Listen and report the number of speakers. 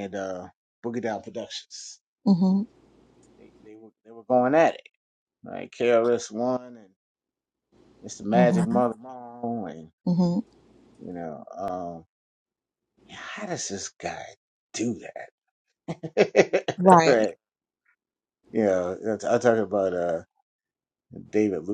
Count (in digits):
2